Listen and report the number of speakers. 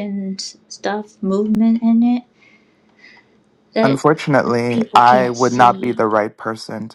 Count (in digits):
2